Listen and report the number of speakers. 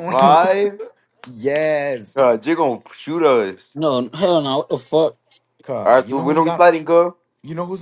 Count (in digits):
3